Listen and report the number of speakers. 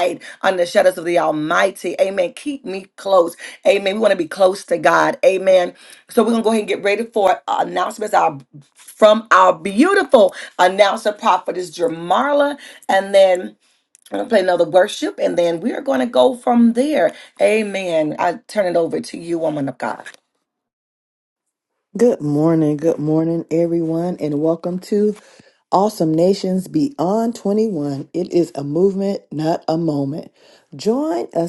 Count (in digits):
2